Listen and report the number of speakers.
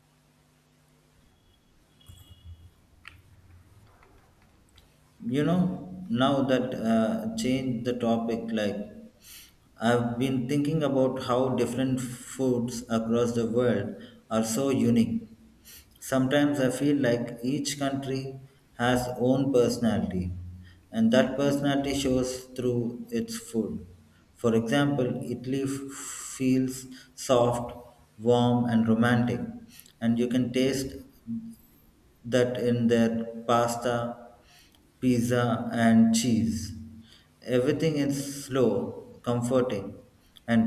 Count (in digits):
1